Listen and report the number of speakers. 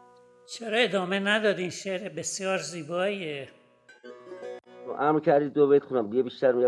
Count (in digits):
2